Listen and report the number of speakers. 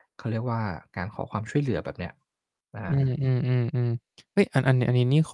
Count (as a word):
two